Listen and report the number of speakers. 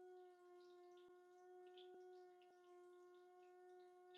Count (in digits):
0